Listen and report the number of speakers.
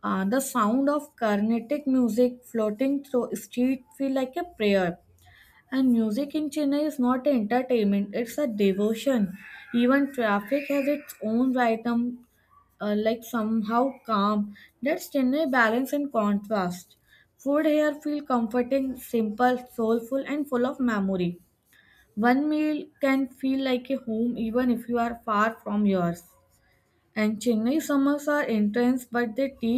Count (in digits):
1